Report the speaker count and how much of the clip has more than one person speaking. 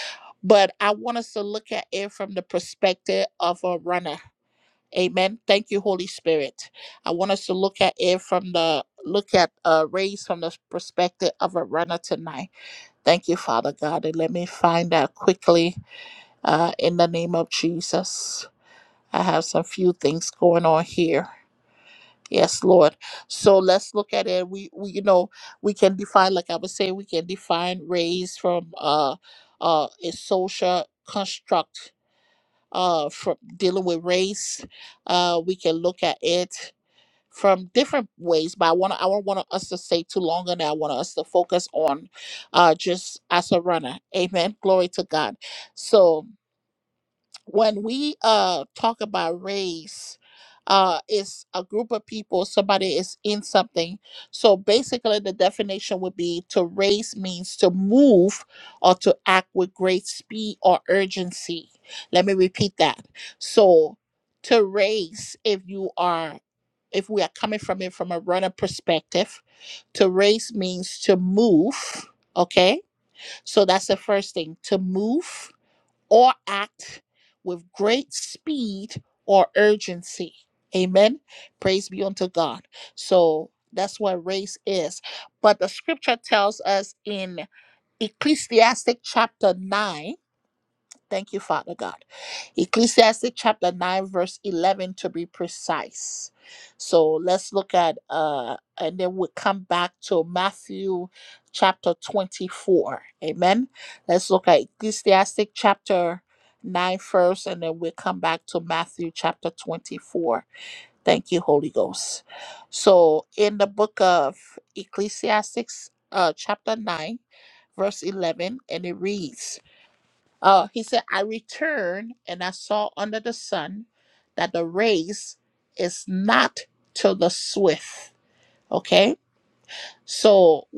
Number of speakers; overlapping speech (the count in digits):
1, no overlap